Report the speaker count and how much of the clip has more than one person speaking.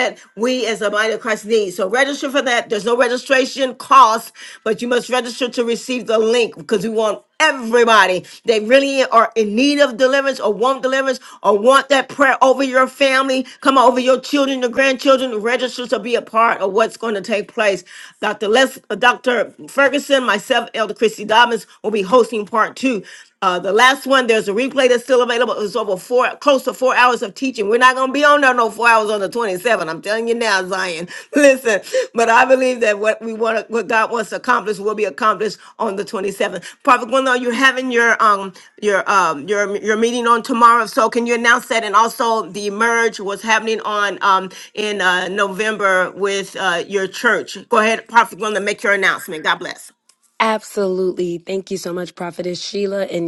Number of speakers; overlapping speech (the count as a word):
two, no overlap